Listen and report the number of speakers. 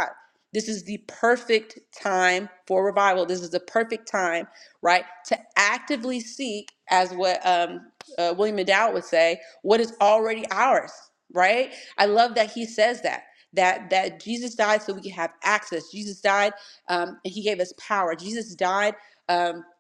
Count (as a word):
one